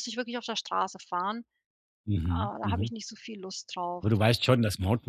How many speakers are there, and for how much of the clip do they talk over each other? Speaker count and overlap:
two, about 13%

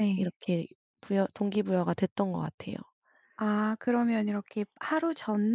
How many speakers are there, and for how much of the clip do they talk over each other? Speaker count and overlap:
two, about 5%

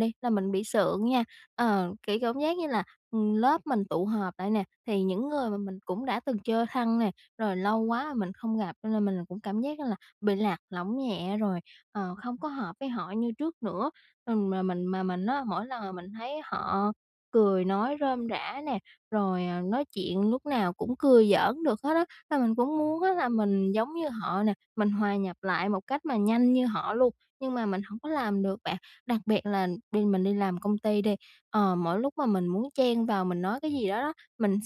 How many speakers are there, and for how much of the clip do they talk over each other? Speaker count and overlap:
one, no overlap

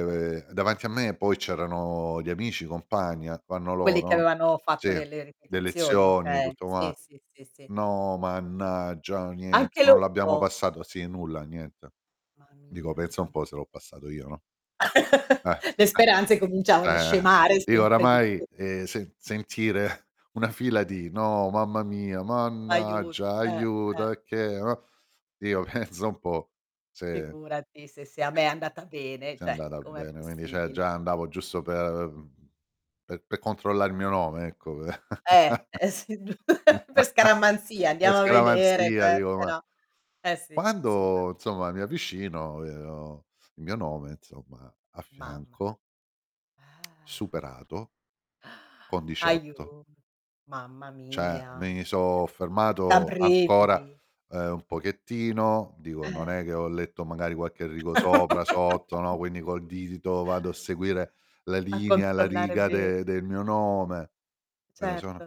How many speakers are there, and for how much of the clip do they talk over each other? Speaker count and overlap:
two, about 19%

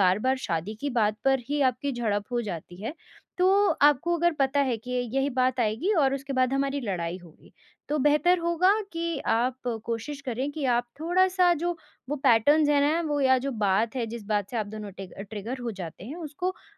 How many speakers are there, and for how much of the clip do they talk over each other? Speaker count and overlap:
one, no overlap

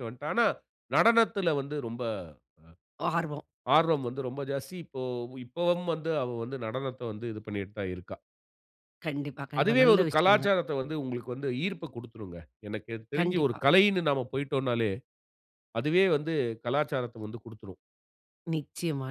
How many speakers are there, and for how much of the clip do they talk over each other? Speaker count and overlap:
two, about 7%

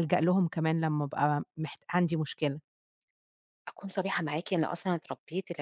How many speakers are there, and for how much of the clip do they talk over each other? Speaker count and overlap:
two, no overlap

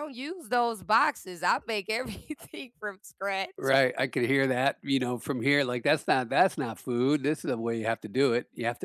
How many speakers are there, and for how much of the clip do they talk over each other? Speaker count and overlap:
two, no overlap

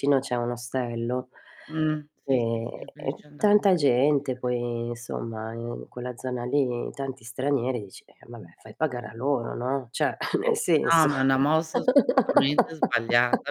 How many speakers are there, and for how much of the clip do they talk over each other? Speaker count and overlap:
two, about 11%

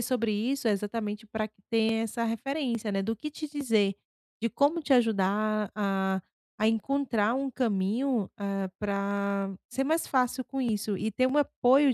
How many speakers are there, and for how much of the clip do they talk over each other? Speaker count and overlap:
one, no overlap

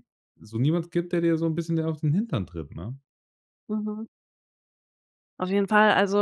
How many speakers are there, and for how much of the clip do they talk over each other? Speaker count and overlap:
two, no overlap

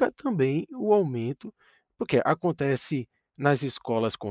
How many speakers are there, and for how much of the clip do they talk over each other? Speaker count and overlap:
one, no overlap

